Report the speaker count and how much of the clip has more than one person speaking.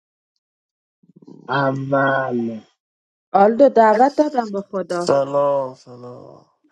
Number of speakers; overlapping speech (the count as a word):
three, under 1%